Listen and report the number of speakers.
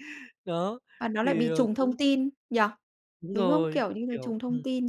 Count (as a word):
two